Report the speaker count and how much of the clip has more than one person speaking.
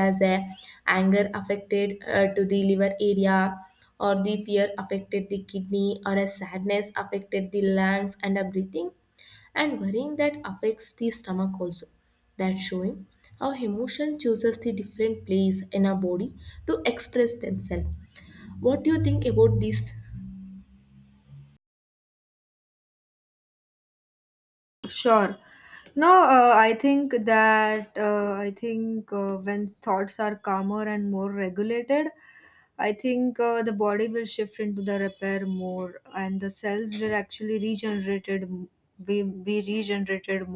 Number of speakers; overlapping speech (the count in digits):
2, no overlap